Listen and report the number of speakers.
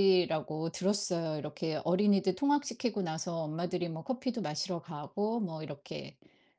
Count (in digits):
1